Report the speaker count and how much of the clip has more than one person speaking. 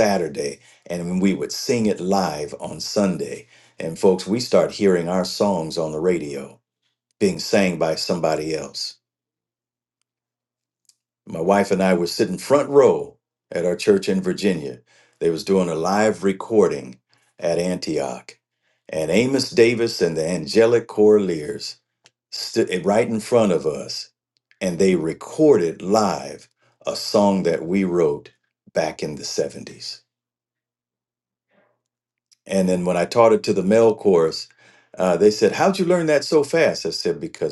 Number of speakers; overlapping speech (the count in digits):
1, no overlap